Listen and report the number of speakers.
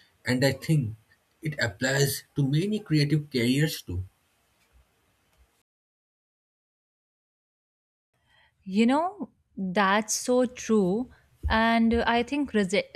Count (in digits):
2